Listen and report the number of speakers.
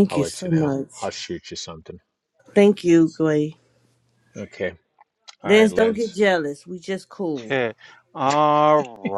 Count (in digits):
3